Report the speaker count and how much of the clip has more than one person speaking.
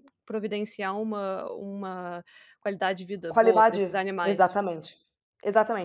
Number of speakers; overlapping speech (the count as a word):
two, about 19%